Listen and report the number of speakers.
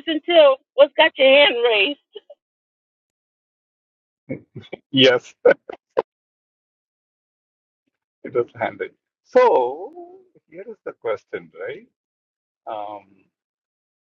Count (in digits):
2